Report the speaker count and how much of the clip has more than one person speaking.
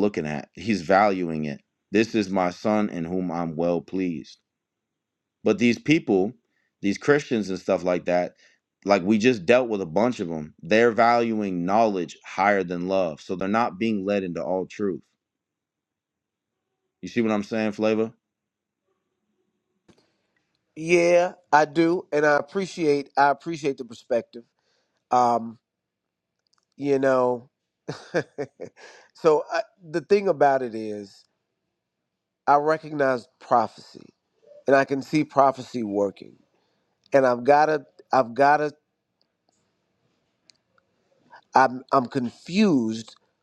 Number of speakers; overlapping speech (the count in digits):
2, no overlap